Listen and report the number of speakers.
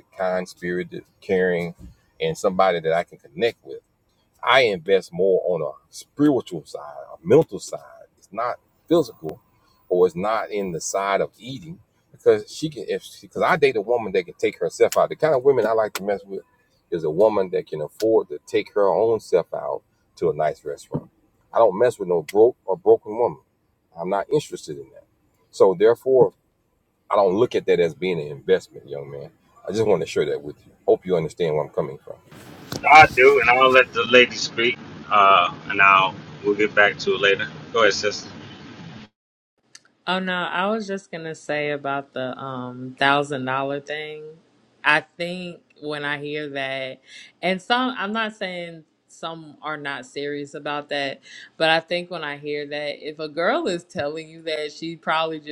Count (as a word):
three